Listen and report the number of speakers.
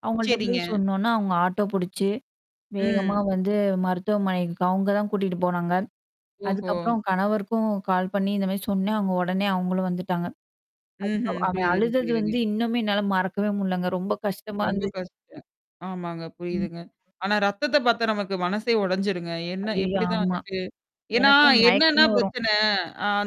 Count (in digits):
2